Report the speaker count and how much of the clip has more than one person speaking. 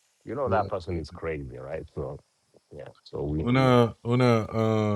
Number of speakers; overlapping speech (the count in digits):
2, about 11%